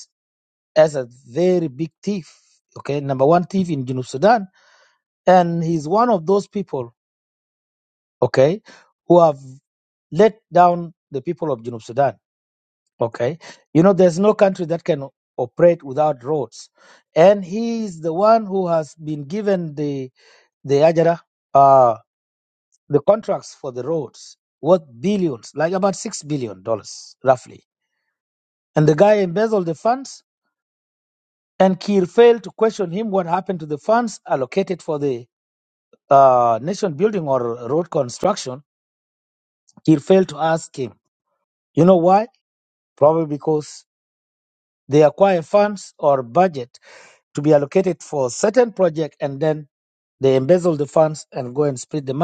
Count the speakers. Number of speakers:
1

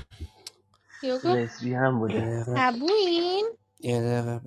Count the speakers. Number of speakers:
3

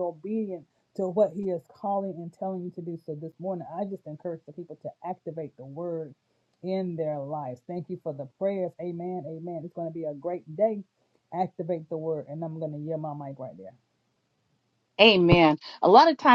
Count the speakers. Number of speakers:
2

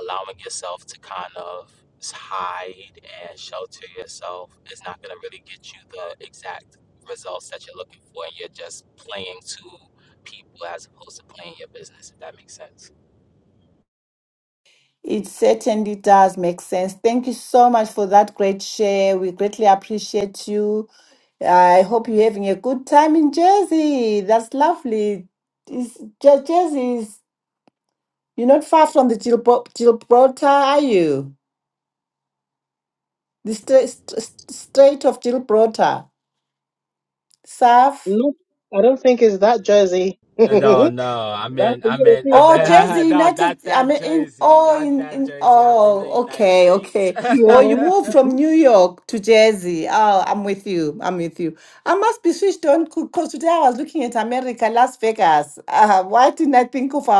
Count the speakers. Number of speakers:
3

